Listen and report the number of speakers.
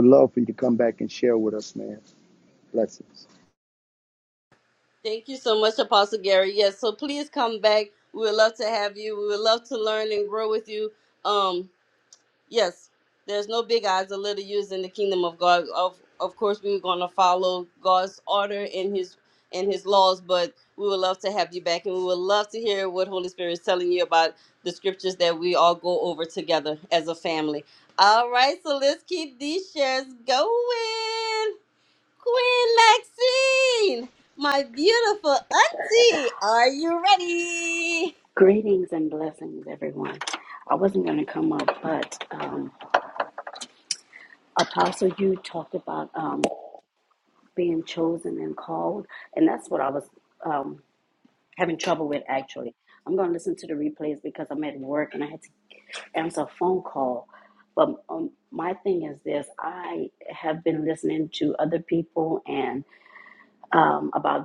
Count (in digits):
3